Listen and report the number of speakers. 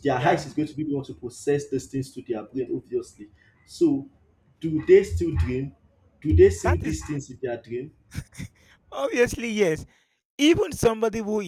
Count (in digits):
2